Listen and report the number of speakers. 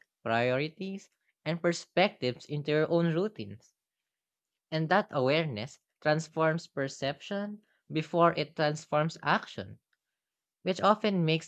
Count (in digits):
1